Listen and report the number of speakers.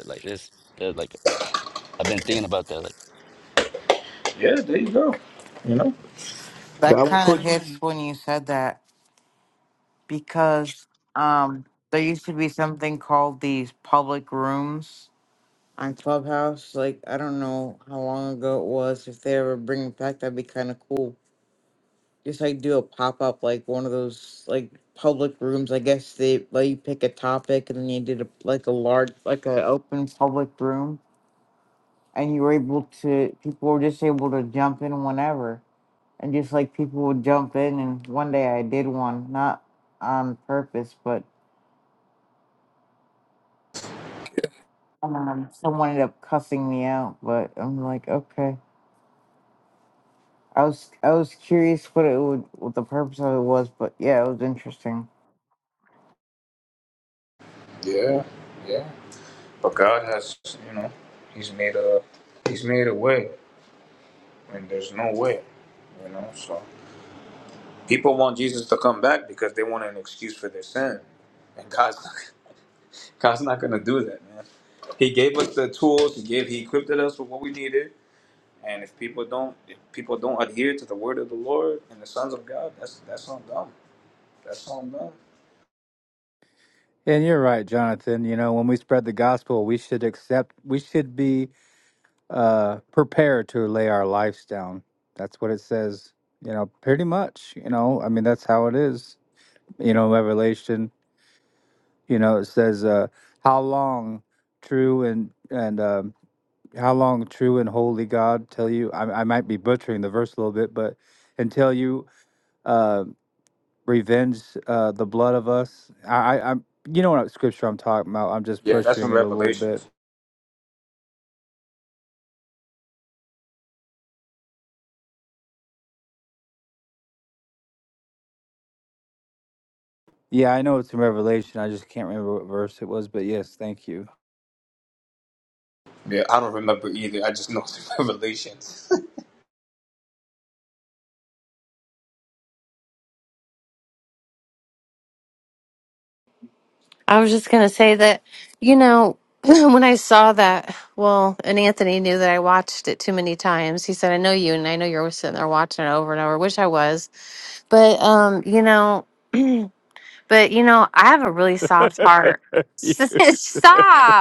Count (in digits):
5